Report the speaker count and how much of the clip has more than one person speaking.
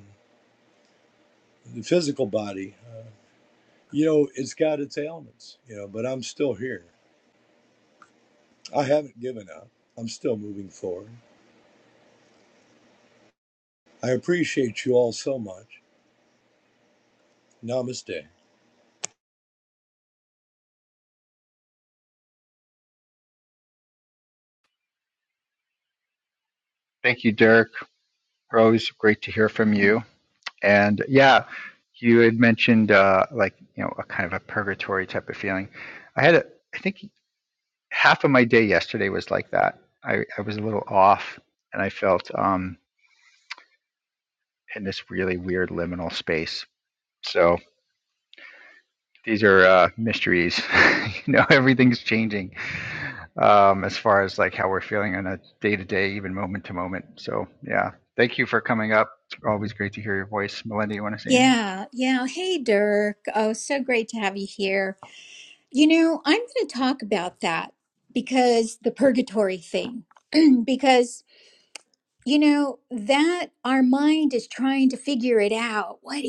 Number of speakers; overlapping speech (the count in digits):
3, under 1%